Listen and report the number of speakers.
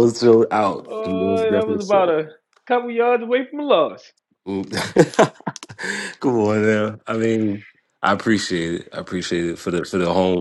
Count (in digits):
2